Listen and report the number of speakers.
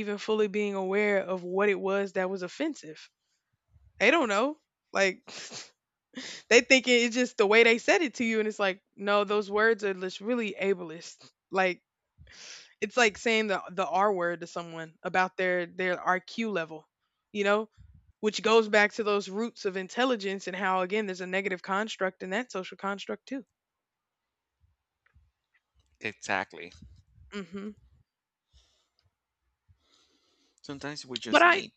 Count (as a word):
two